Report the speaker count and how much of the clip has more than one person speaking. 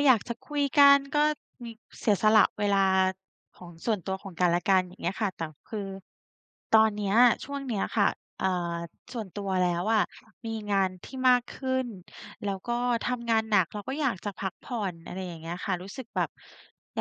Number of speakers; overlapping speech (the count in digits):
1, no overlap